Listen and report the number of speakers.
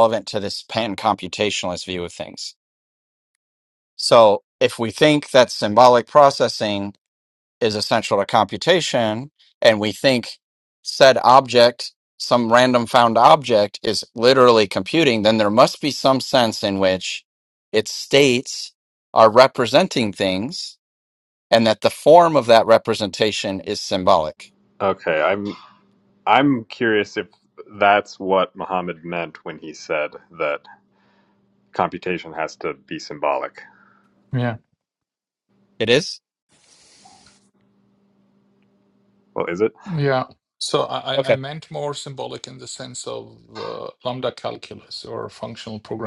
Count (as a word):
three